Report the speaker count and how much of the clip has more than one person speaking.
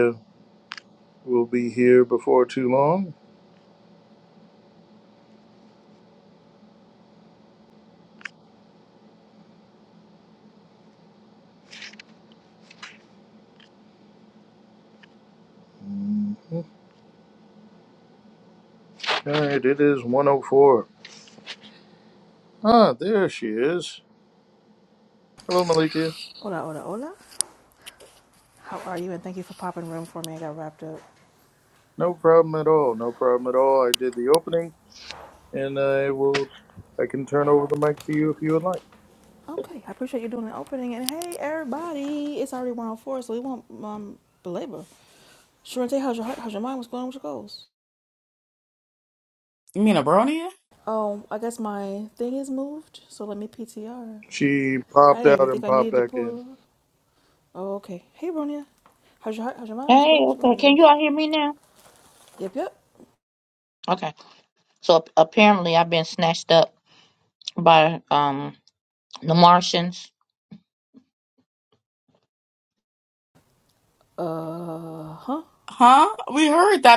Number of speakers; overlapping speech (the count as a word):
four, about 3%